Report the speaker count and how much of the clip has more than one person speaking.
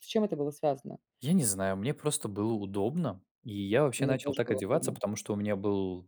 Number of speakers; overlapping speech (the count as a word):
two, about 16%